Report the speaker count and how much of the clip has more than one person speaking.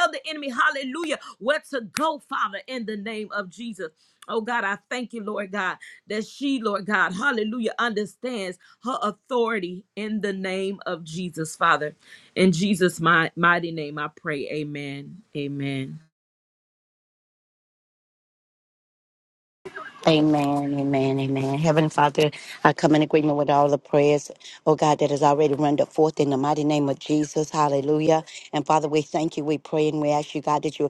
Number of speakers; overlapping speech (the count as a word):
two, no overlap